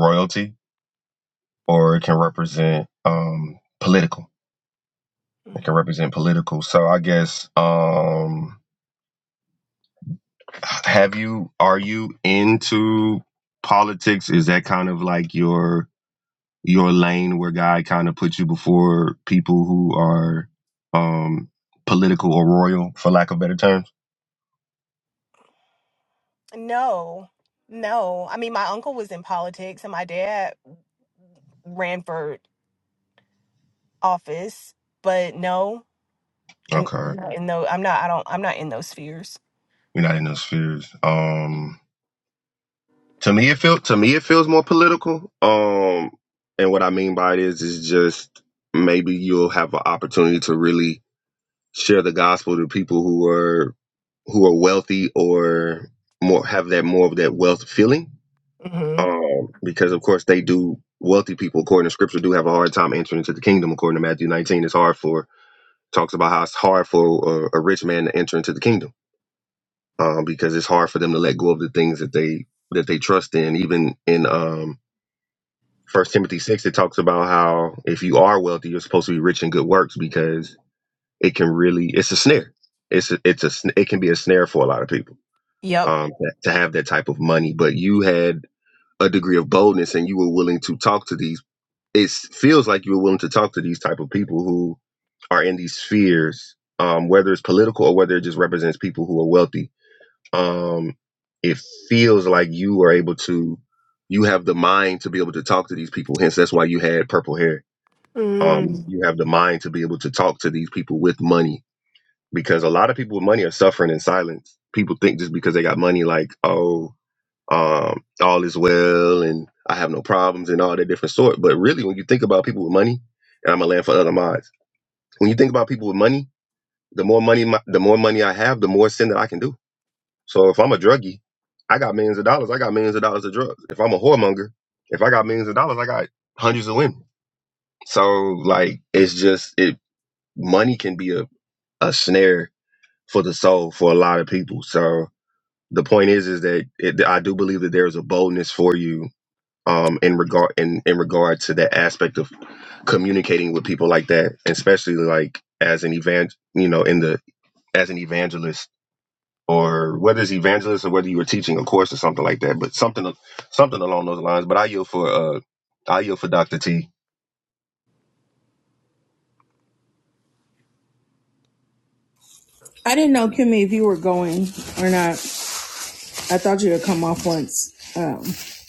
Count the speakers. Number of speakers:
three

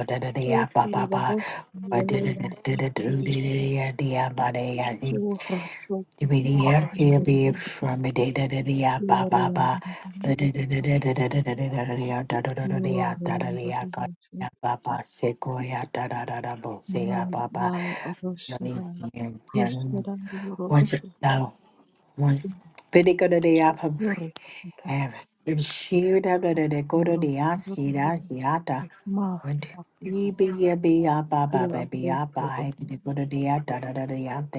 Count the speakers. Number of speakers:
two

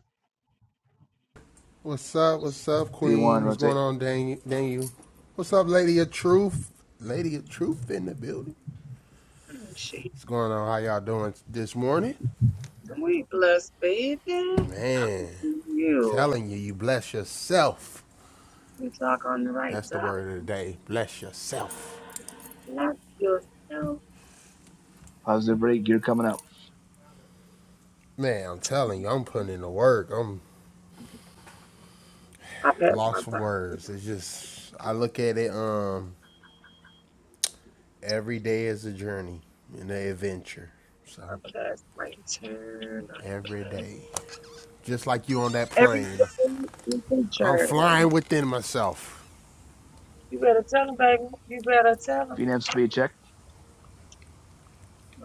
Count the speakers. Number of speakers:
three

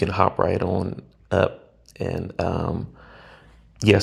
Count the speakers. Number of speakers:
one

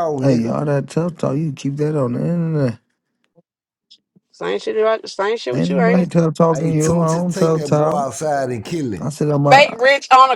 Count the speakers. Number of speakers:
three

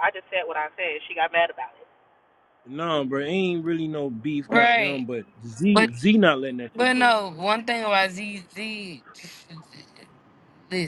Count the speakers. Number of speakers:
three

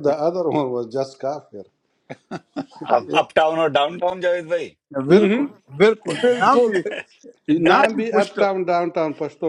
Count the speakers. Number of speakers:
three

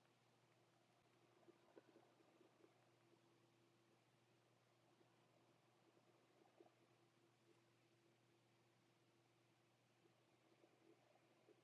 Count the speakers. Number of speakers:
zero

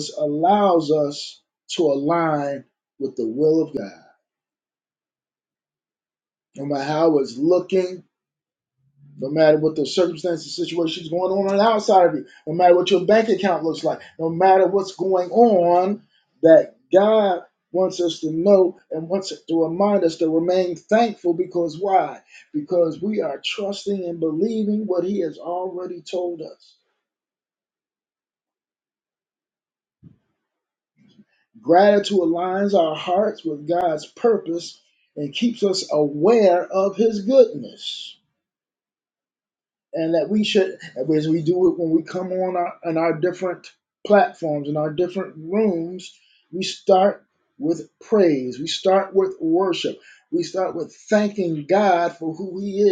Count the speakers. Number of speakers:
one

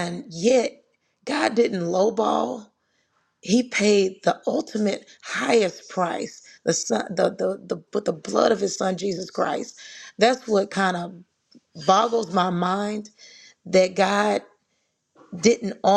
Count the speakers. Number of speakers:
one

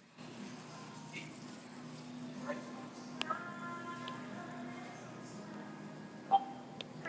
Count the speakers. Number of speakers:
zero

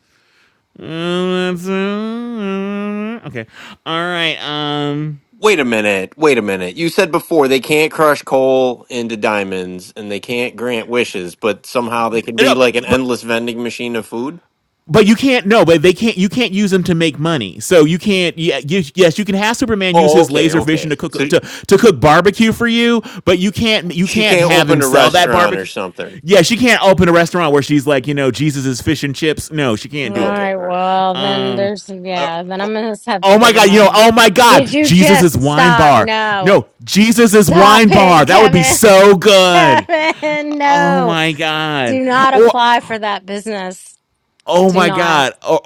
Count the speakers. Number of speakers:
three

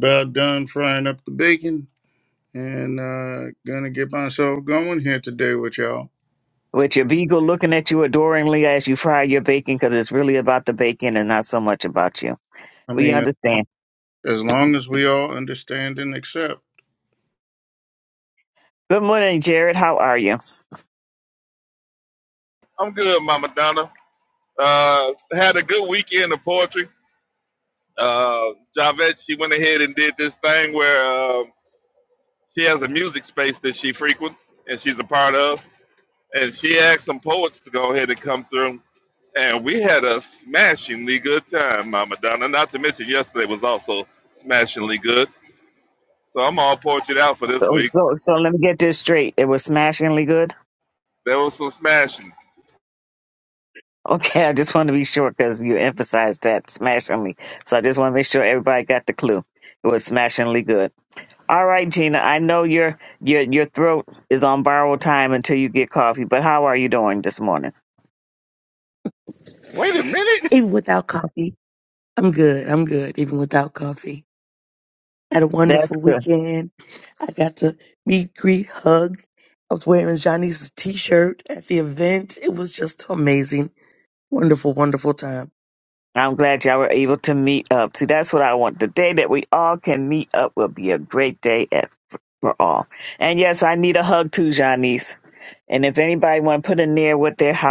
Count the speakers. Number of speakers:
four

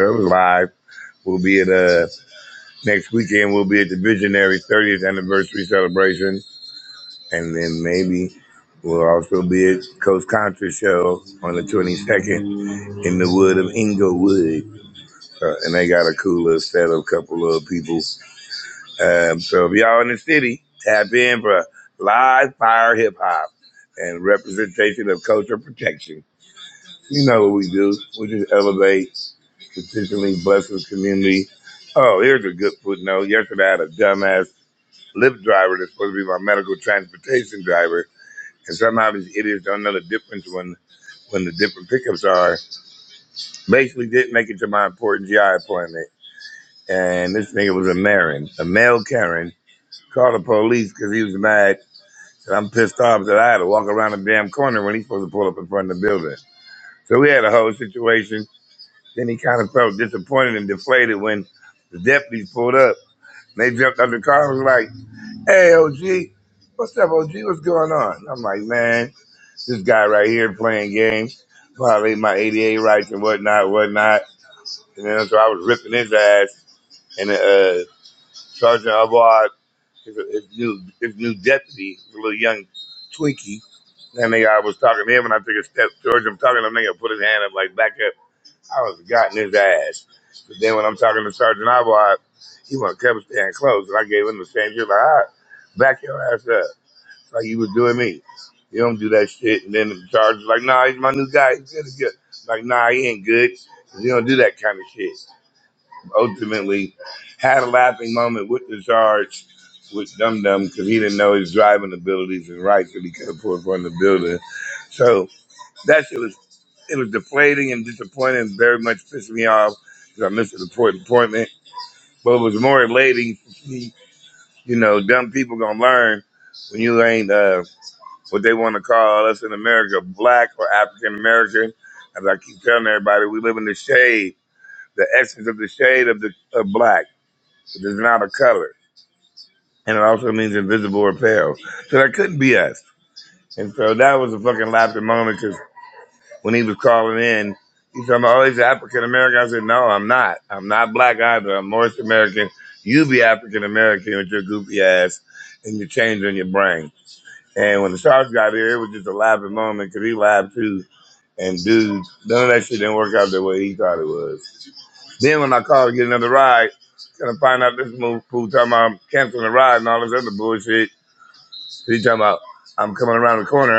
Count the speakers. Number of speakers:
one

